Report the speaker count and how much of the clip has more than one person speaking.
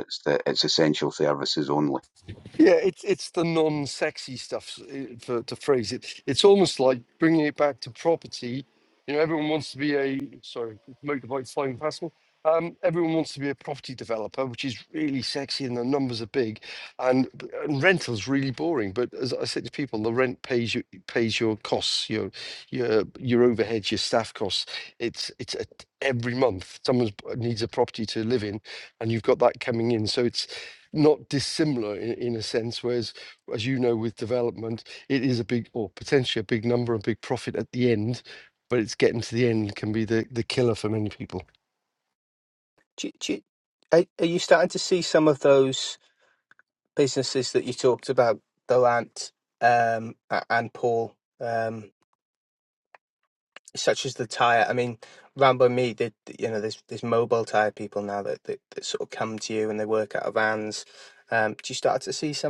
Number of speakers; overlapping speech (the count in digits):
3, no overlap